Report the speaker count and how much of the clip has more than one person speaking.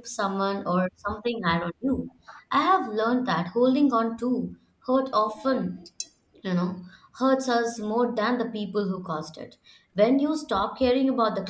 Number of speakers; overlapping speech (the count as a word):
one, no overlap